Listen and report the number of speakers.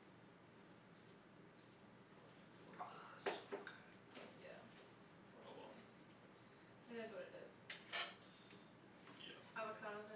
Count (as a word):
two